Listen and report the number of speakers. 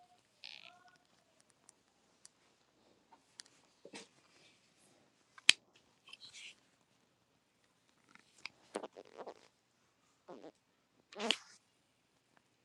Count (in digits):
0